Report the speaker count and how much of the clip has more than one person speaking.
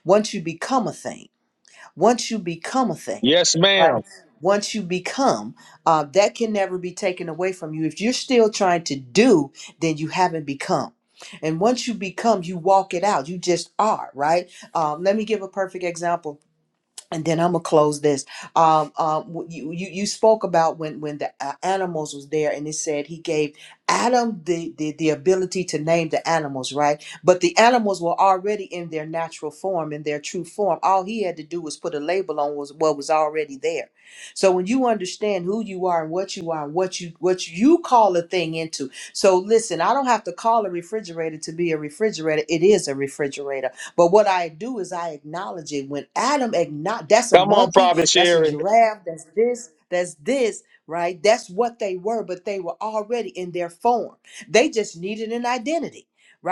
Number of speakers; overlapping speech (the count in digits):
2, about 3%